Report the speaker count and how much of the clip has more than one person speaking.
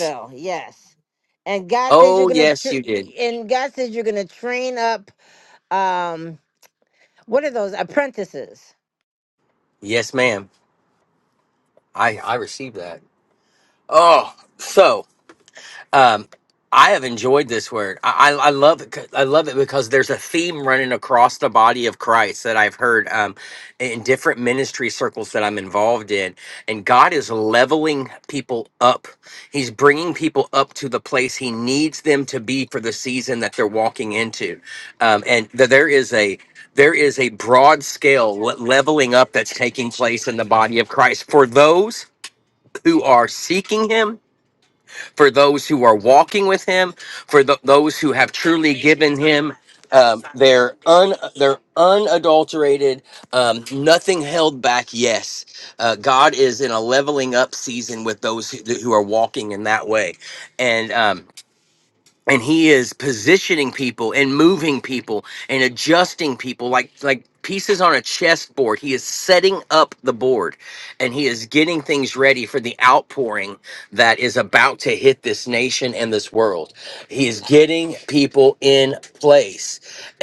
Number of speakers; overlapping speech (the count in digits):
2, about 1%